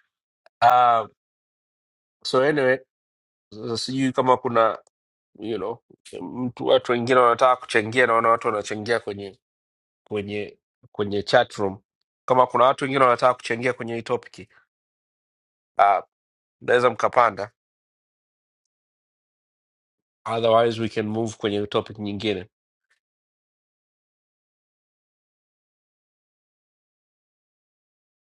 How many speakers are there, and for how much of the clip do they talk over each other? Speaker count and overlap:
one, no overlap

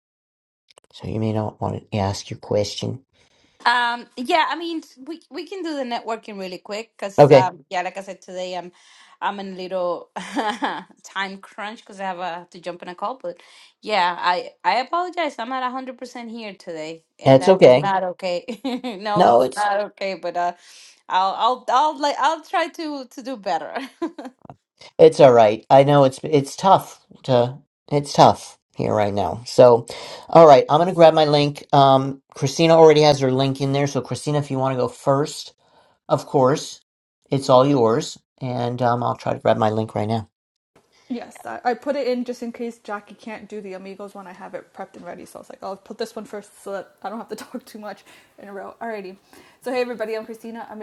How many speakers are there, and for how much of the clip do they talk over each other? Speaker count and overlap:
three, about 3%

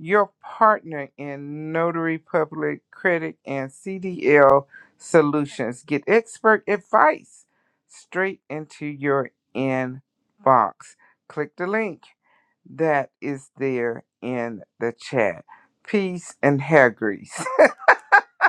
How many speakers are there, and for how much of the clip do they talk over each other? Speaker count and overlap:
one, no overlap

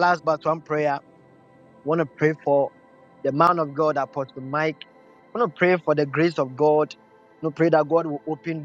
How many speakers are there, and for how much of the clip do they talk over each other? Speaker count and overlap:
one, no overlap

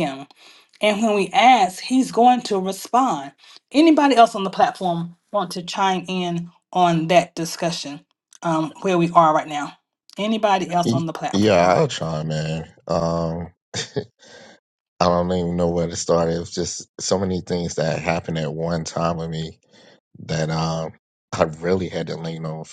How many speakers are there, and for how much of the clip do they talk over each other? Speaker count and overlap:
two, about 3%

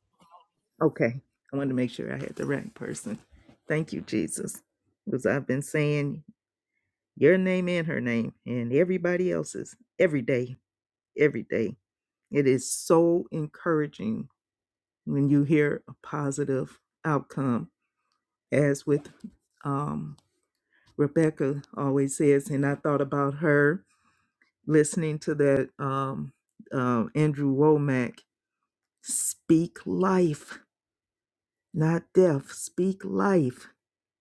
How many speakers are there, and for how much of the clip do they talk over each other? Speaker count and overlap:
one, no overlap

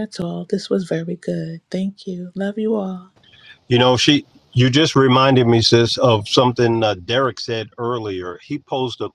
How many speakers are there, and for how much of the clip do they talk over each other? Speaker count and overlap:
two, no overlap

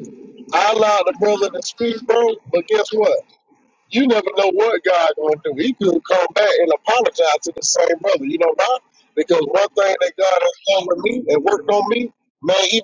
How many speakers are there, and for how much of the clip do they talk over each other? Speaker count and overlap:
one, no overlap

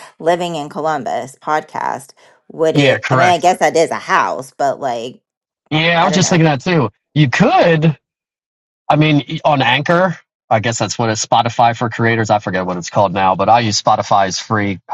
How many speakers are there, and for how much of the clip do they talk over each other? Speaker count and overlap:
two, about 7%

